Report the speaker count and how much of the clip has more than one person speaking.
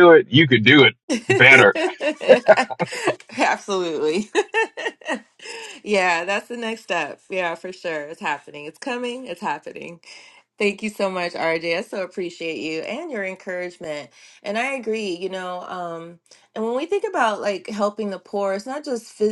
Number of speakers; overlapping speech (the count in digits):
2, no overlap